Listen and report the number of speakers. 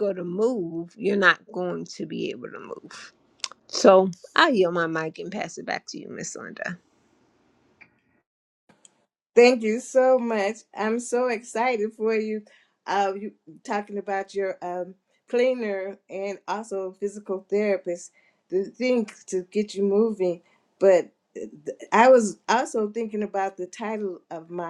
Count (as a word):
two